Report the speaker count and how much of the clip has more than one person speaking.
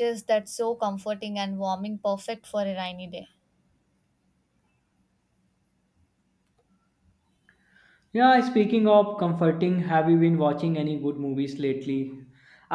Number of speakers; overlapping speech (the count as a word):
two, no overlap